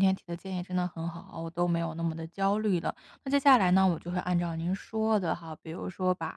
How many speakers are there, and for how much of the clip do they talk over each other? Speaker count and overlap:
1, no overlap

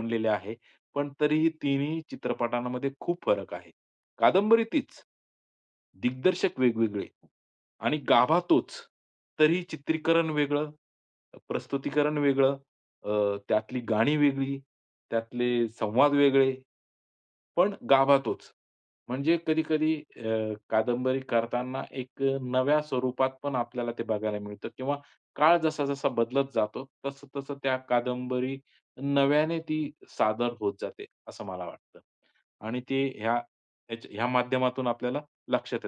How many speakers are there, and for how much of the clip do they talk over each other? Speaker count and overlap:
1, no overlap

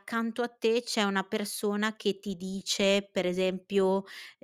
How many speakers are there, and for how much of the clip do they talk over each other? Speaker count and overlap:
1, no overlap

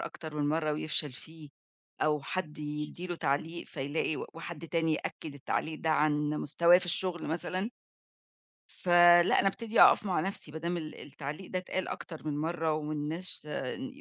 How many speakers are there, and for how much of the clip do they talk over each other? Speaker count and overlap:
1, no overlap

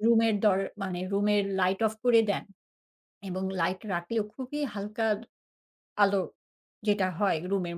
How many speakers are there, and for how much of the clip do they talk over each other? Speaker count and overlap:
1, no overlap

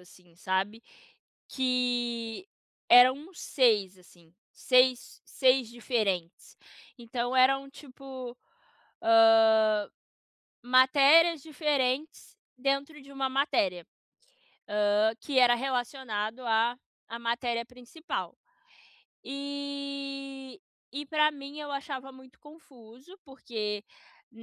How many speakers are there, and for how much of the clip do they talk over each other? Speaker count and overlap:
1, no overlap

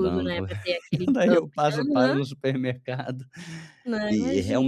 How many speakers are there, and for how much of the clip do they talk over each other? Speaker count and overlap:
2, about 38%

